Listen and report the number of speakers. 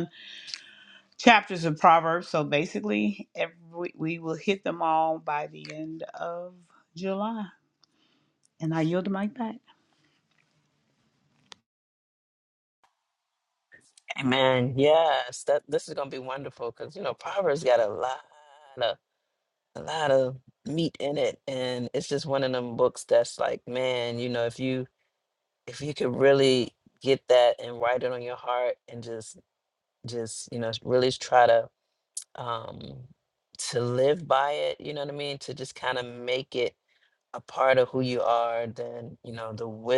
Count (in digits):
2